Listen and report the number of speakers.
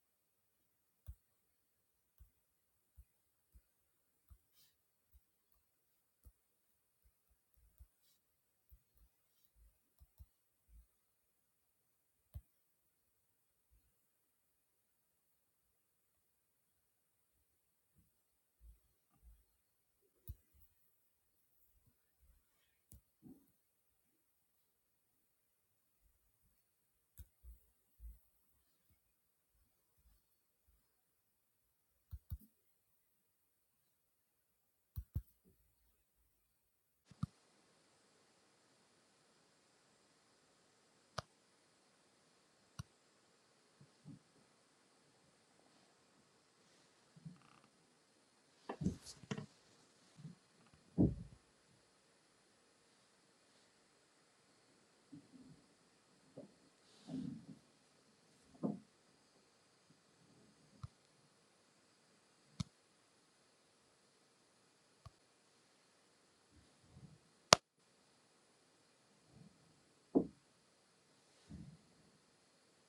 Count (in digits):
0